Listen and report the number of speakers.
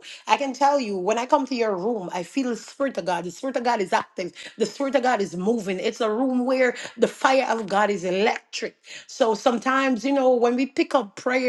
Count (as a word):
one